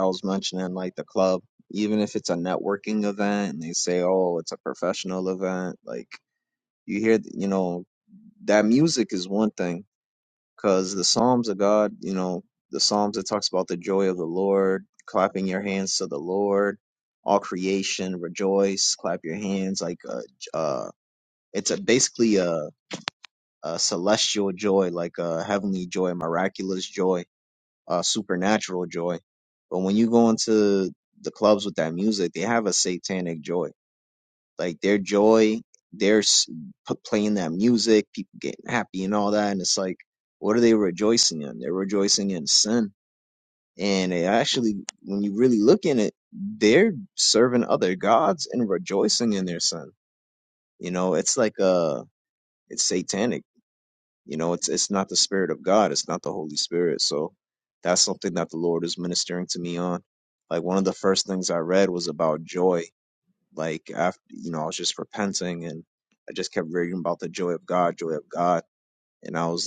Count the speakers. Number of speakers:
1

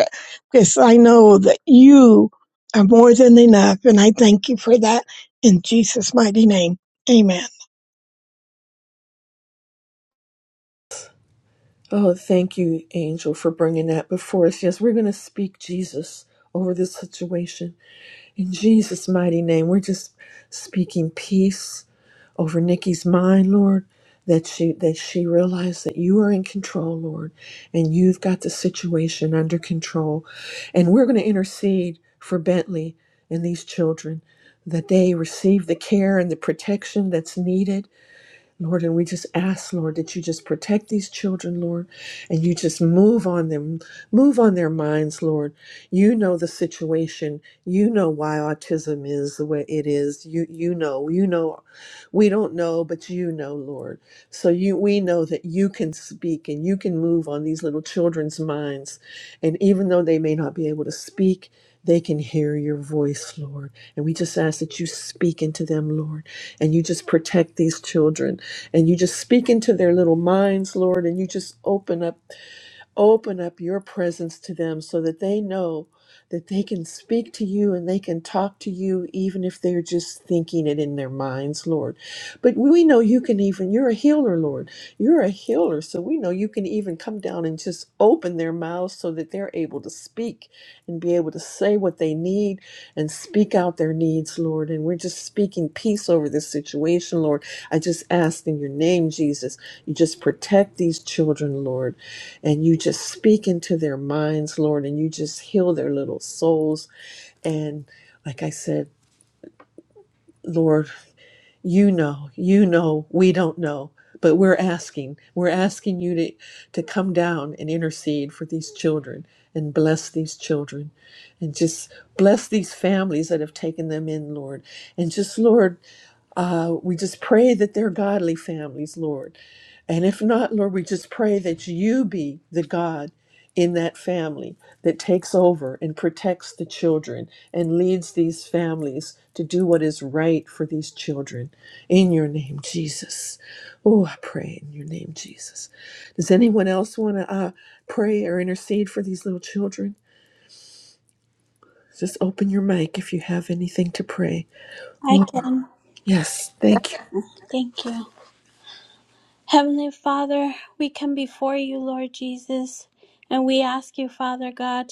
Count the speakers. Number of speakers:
3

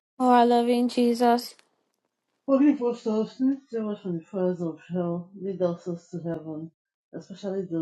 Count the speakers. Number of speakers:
2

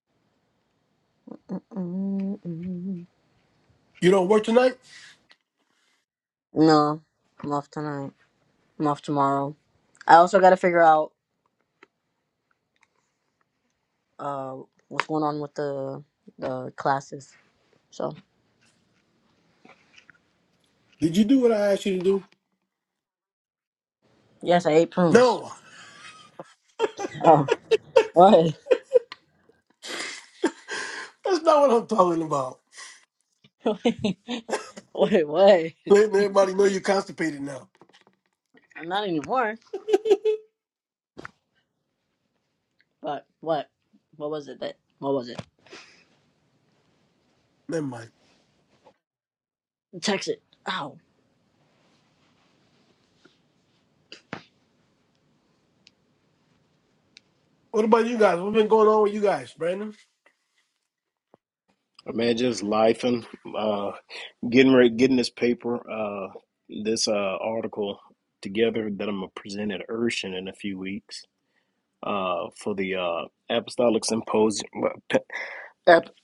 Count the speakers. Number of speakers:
3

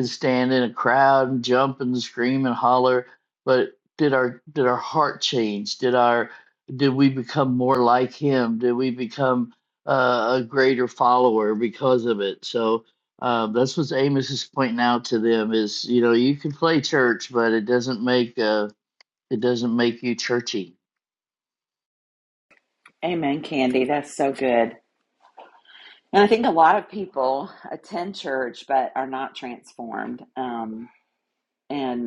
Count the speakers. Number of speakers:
2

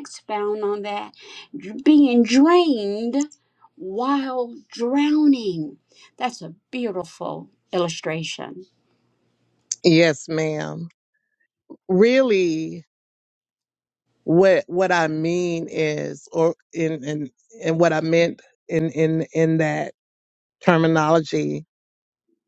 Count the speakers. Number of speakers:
2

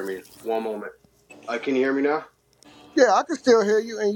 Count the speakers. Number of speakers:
2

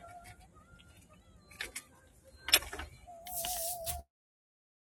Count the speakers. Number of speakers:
0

